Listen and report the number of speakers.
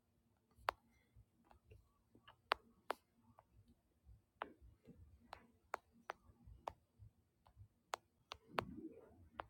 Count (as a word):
zero